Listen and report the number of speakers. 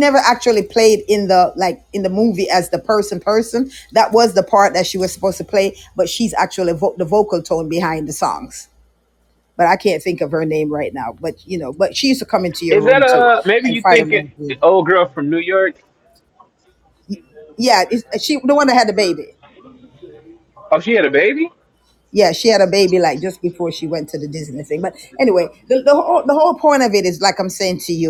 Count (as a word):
two